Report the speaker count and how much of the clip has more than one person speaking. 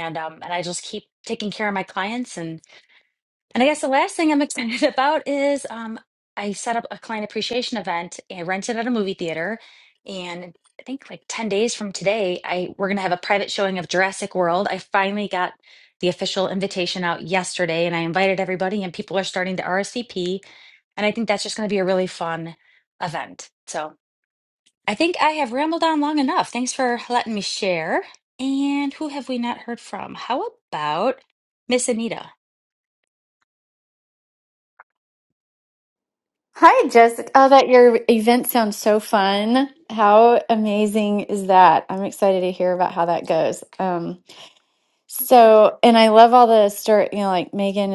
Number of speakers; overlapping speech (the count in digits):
2, no overlap